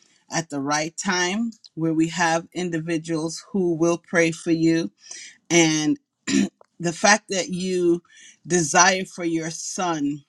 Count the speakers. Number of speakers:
1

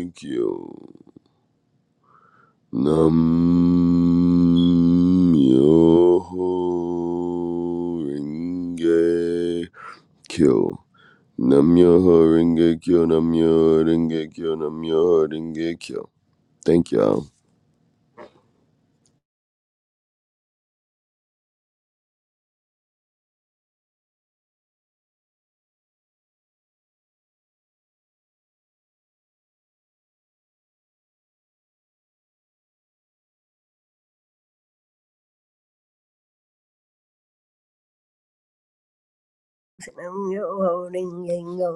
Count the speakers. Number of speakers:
2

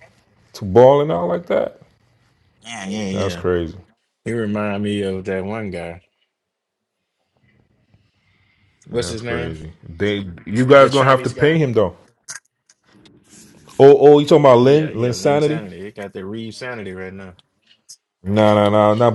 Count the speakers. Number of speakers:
2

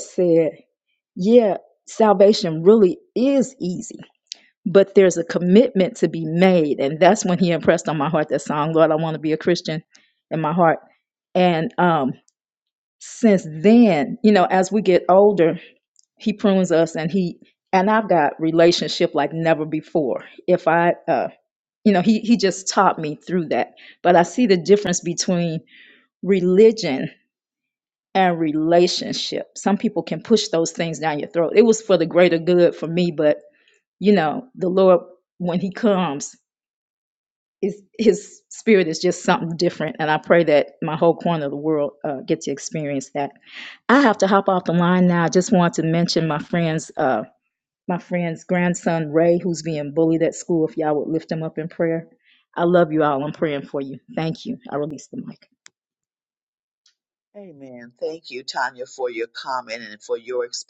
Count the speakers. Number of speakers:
2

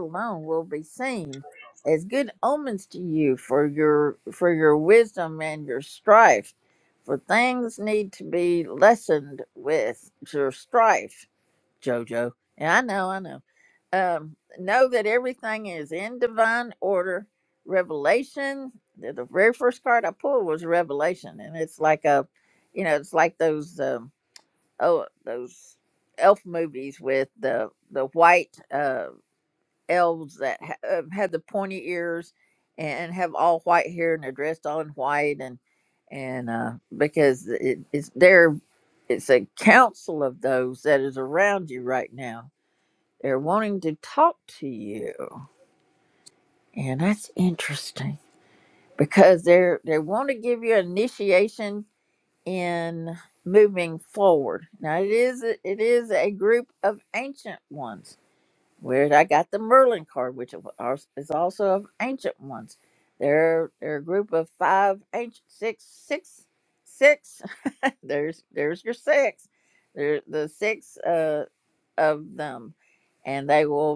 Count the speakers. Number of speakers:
1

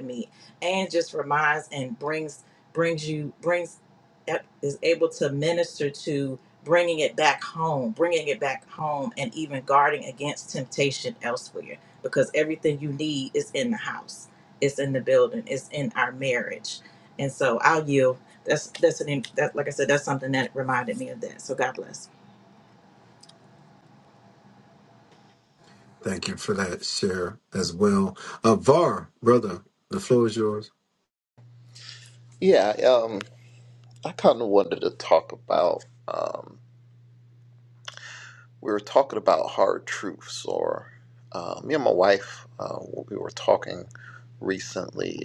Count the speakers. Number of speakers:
3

